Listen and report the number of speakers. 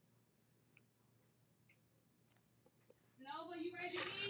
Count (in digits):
0